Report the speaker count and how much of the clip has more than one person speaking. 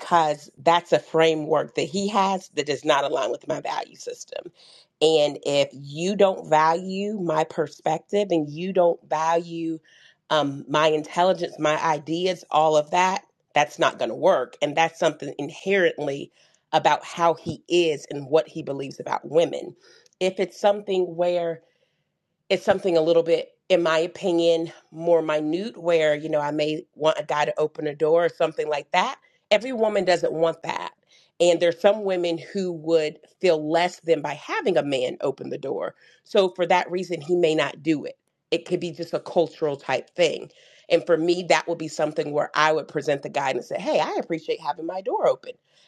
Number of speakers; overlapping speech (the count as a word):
one, no overlap